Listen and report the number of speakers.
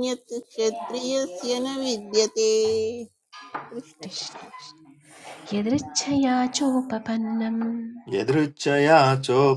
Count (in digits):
3